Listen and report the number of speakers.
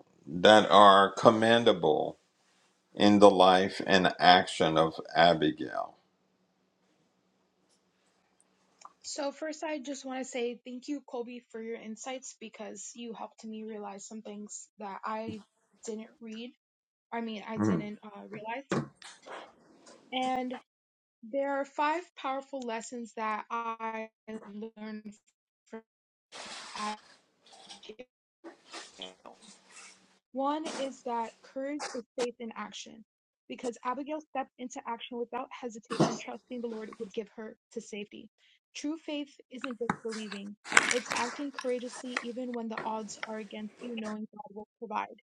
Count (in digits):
2